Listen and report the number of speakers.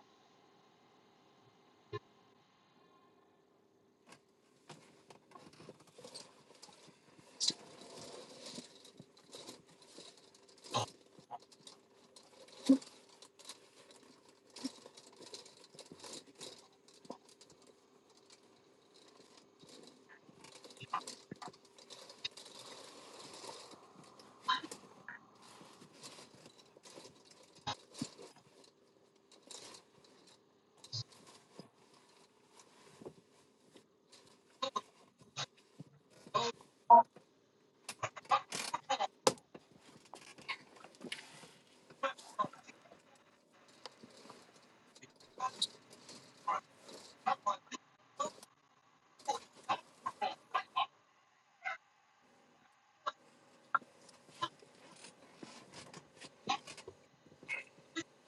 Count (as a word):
zero